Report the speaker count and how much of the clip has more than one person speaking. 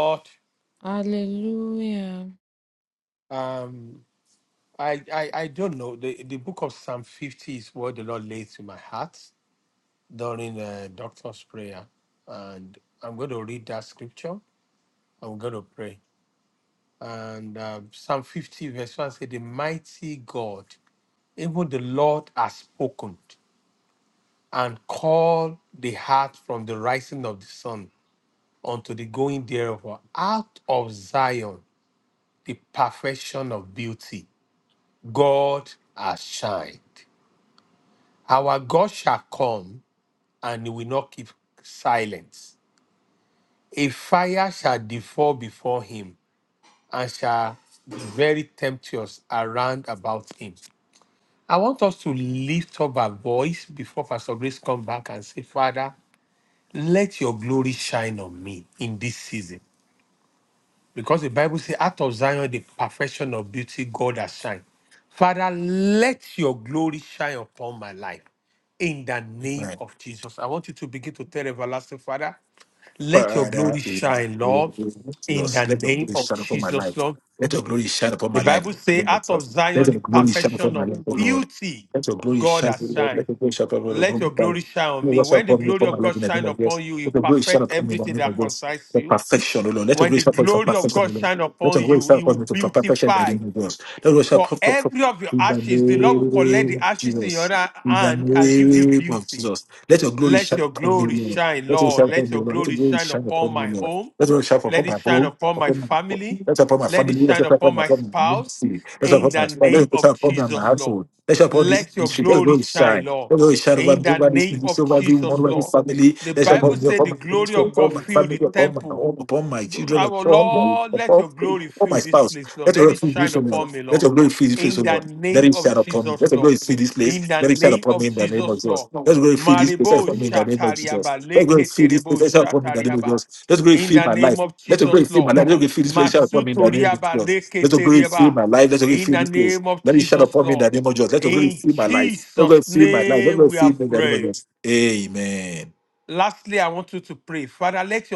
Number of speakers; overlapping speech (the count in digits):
3, about 35%